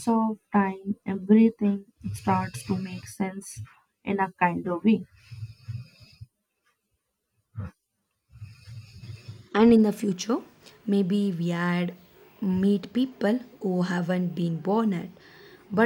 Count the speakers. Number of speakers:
two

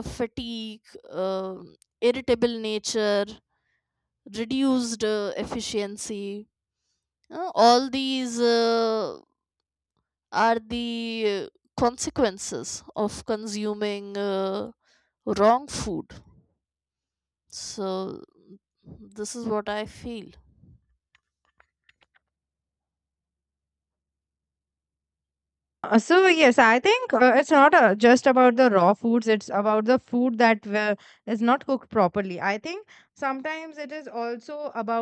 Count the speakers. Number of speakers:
two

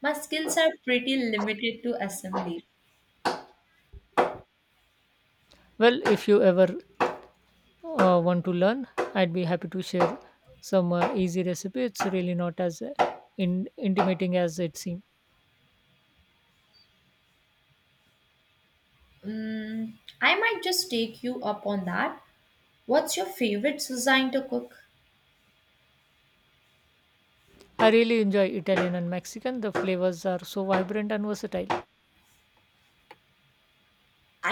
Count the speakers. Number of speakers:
two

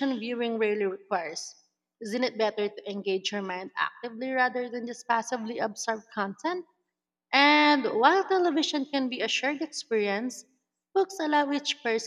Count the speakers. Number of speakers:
one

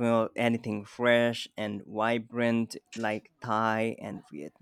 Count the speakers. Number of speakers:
one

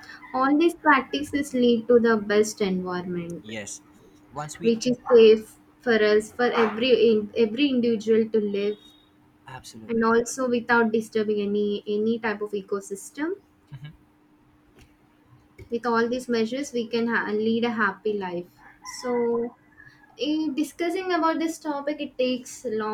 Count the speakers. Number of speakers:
two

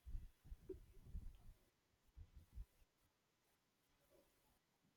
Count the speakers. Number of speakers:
zero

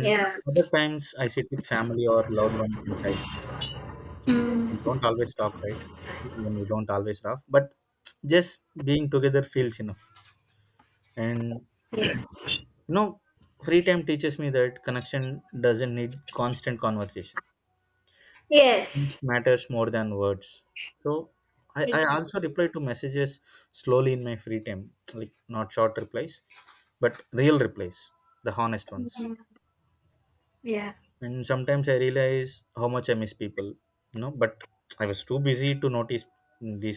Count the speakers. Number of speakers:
two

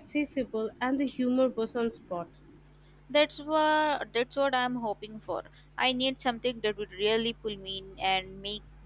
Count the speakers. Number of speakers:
two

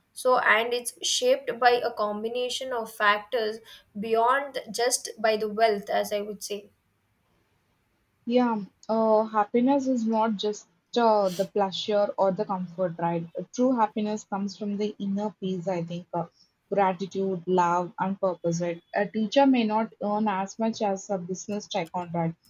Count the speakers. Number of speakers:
two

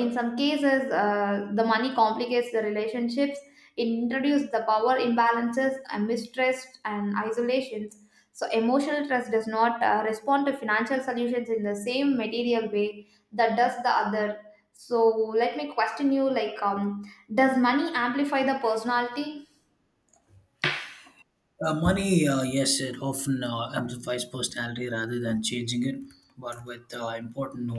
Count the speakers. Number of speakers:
two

